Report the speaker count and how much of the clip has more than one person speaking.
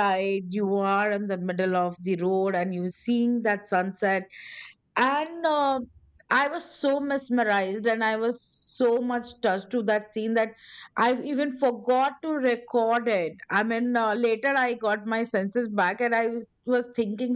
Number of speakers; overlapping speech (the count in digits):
1, no overlap